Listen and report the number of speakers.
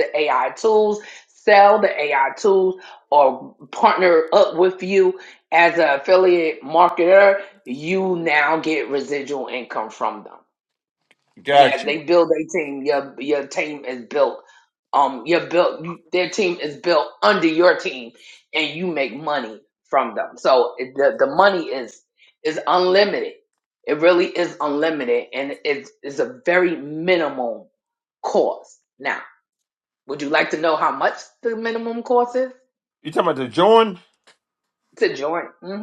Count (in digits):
2